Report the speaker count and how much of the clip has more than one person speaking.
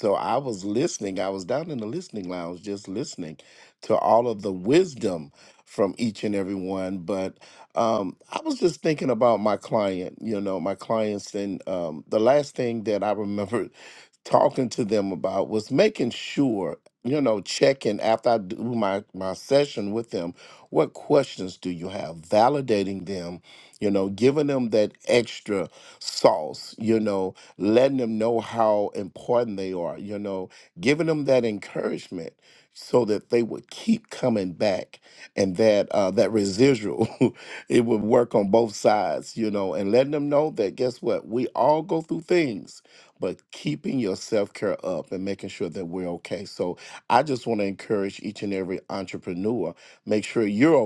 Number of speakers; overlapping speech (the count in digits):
1, no overlap